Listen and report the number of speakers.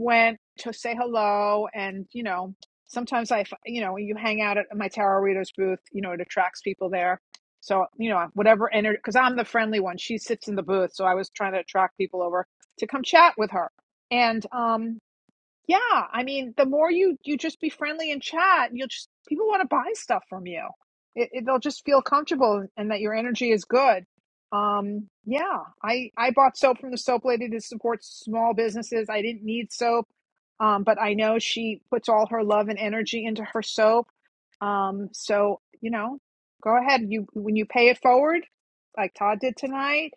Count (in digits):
1